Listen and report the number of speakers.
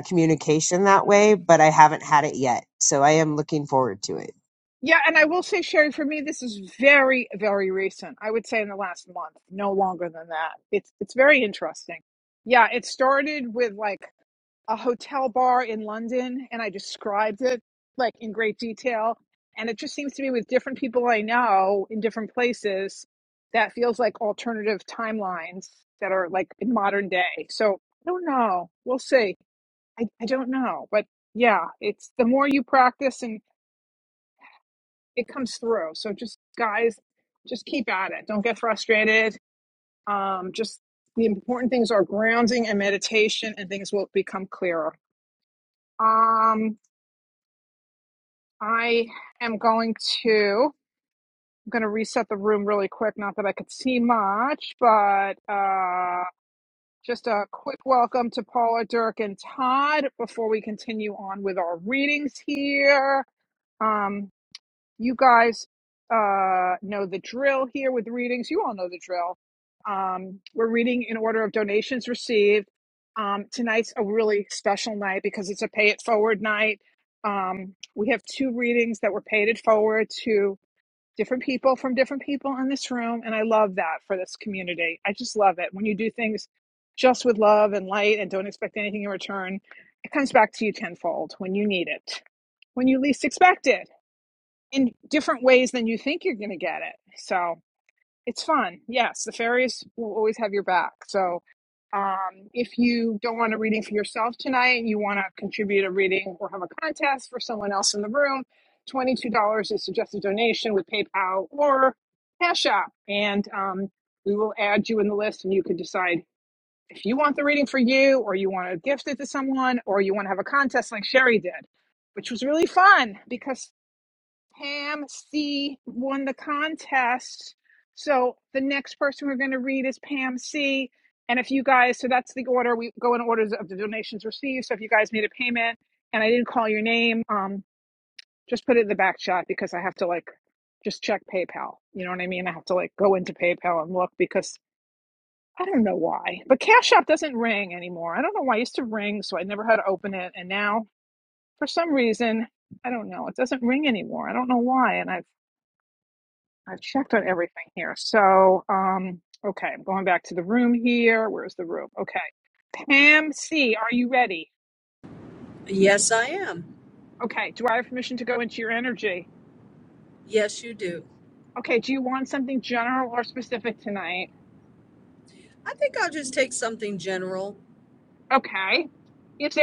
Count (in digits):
3